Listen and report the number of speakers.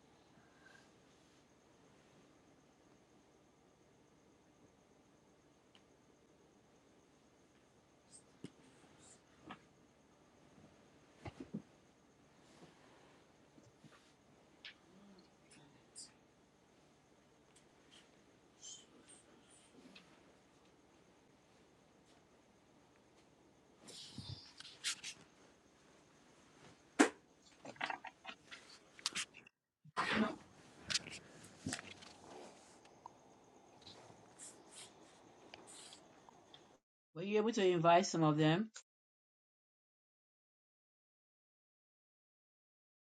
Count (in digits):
1